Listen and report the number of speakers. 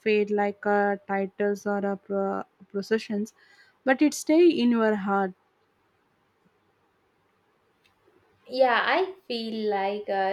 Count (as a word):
two